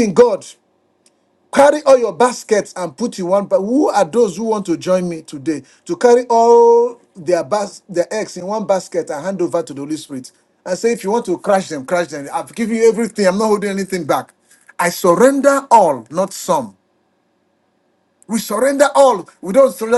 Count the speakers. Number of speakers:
one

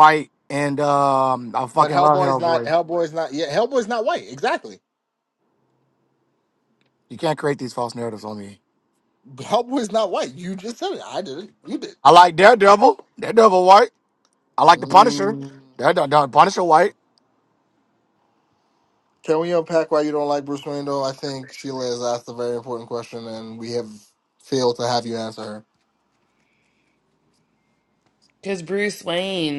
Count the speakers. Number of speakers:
three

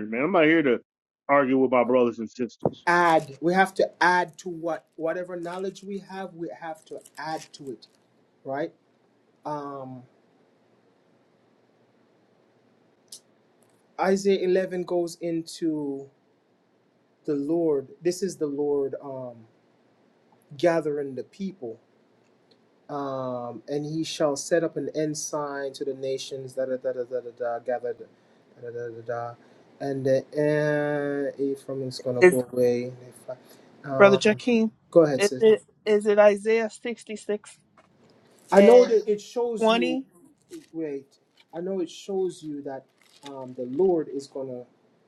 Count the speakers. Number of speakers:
three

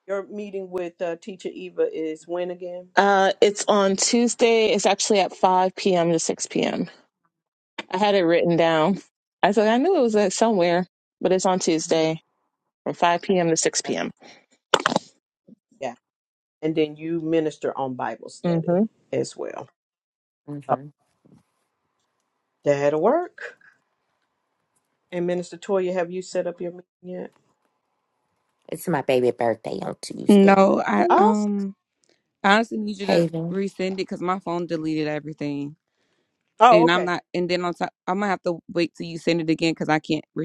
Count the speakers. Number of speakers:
four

